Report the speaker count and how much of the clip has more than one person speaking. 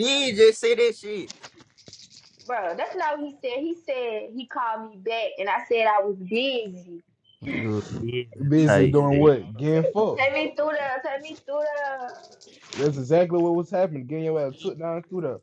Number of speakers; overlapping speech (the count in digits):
4, about 9%